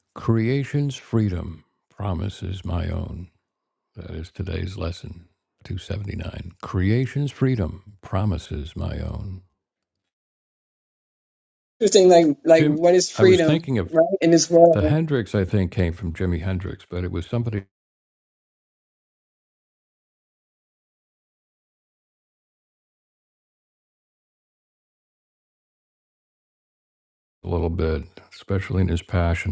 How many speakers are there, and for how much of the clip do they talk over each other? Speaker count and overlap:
two, about 4%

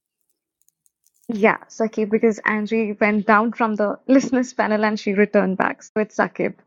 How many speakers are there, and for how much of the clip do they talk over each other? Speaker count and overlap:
one, no overlap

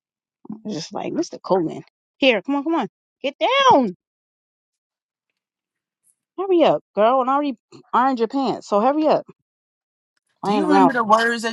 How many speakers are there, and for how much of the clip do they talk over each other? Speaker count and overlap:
two, about 4%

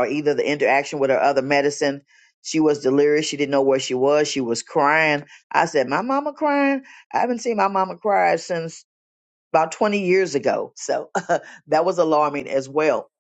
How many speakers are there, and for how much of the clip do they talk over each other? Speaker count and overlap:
one, no overlap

